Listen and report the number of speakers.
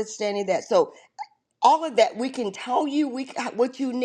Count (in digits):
1